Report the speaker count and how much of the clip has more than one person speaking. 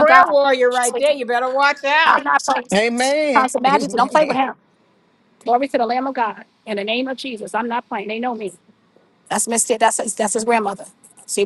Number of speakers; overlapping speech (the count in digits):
3, about 18%